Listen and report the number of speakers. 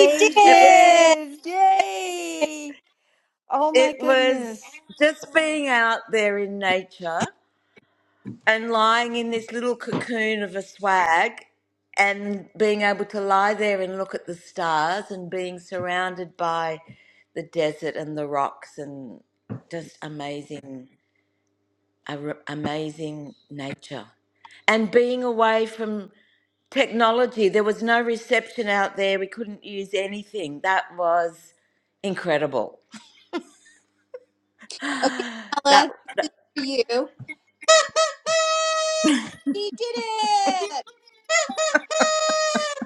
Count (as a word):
three